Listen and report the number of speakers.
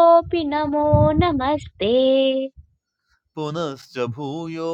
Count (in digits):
2